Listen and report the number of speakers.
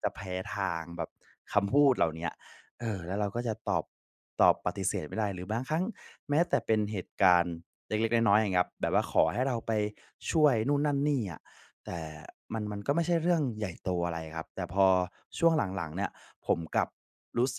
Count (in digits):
1